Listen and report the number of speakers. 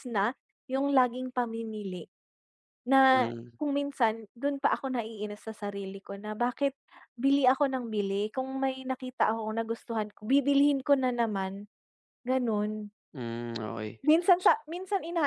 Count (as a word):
two